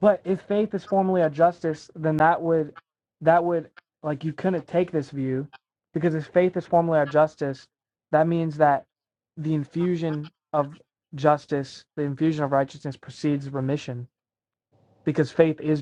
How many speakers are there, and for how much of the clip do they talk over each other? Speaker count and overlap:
one, no overlap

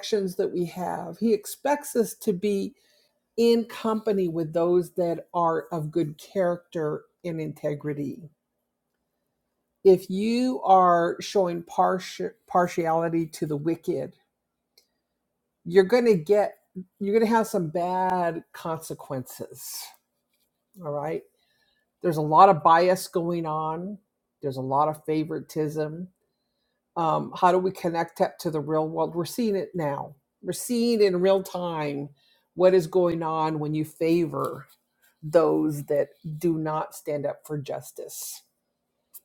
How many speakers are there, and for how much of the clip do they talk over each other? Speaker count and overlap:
one, no overlap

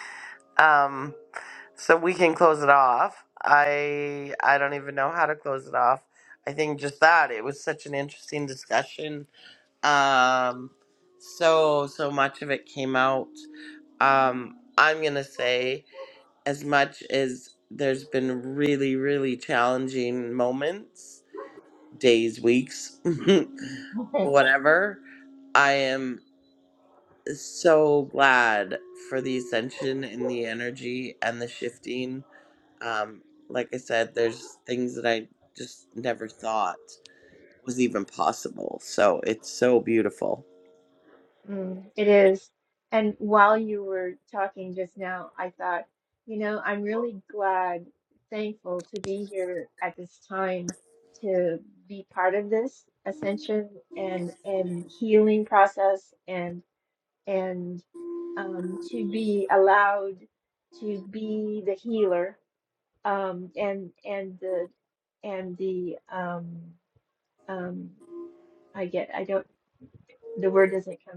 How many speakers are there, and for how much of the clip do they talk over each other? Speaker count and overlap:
two, no overlap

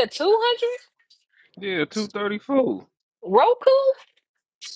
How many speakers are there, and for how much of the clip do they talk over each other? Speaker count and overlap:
two, no overlap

